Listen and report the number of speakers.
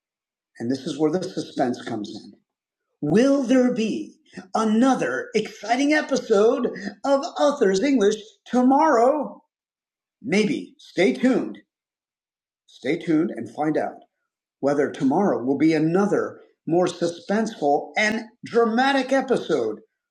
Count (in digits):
1